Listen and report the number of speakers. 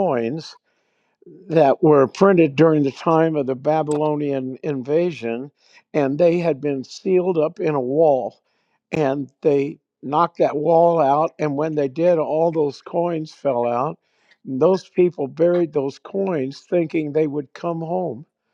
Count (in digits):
1